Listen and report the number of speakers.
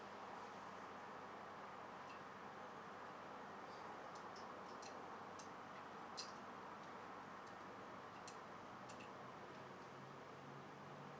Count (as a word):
zero